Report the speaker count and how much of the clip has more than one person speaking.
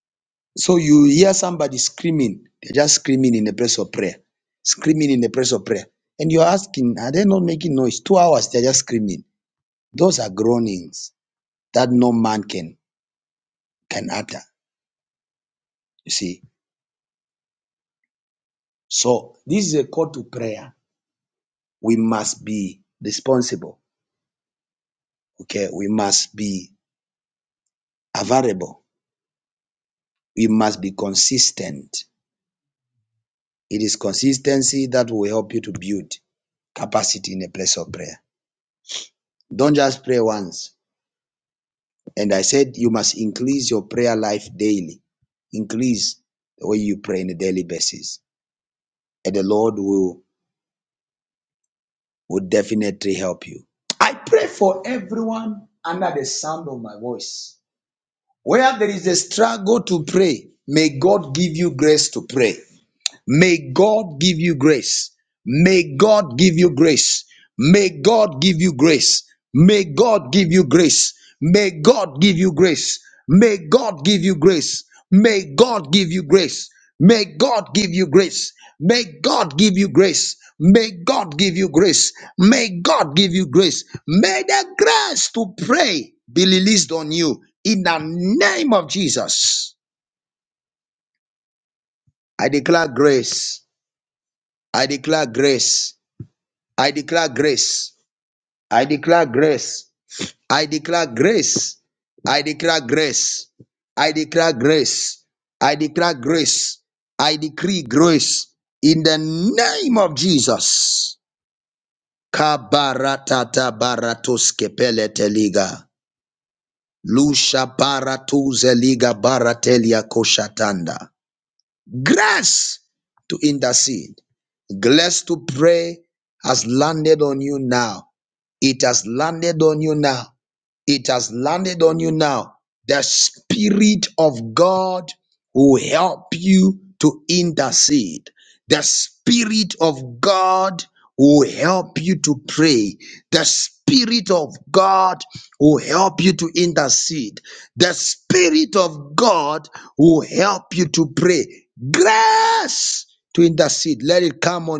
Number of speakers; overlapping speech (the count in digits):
1, no overlap